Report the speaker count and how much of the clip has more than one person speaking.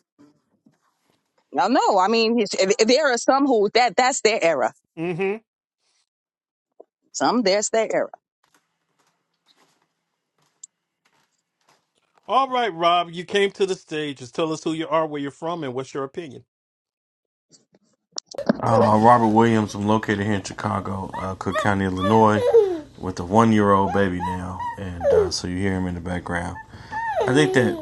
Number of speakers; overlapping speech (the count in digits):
3, no overlap